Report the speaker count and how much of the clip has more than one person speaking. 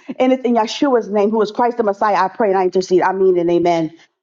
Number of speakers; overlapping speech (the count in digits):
1, no overlap